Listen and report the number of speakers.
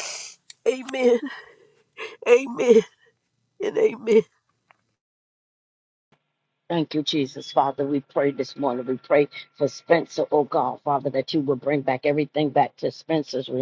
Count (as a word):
two